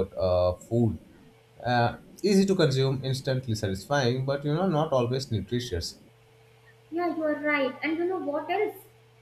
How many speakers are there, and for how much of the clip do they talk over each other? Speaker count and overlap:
two, no overlap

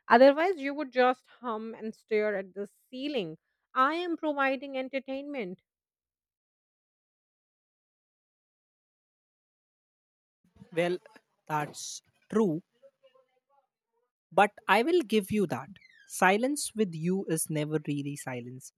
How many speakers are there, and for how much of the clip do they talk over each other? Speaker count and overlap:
two, no overlap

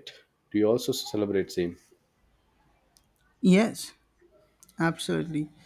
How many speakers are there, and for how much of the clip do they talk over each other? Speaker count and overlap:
two, no overlap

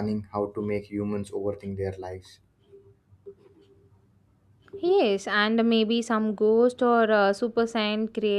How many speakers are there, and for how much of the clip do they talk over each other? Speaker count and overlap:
two, no overlap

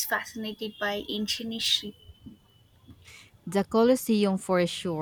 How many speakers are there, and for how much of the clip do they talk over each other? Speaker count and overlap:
two, no overlap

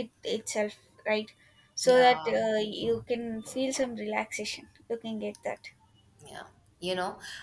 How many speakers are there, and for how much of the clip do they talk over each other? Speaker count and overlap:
two, about 7%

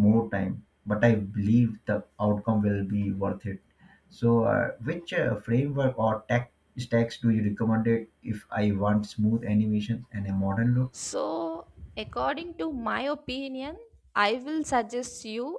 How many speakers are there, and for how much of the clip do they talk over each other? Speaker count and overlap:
two, no overlap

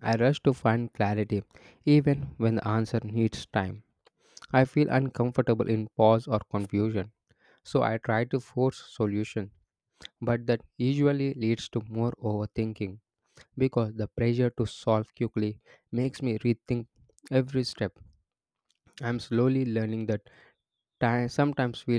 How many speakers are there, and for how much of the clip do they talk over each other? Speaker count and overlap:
one, no overlap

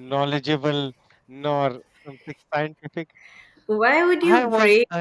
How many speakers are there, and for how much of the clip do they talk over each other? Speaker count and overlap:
two, about 13%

